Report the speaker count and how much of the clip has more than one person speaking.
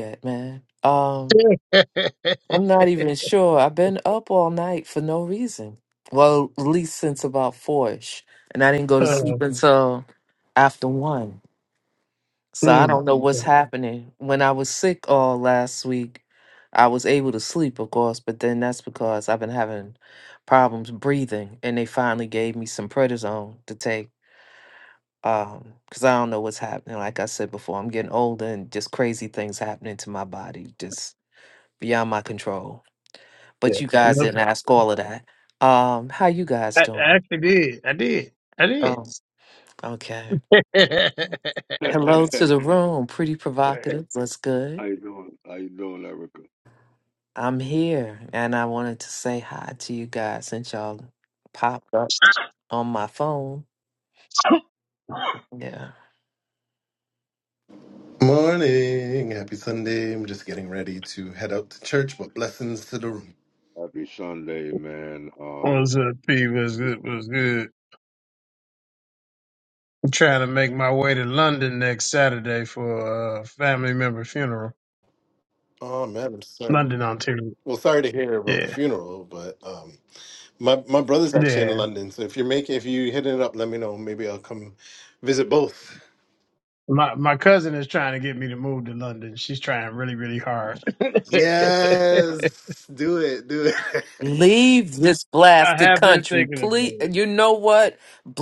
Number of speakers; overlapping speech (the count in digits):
4, about 5%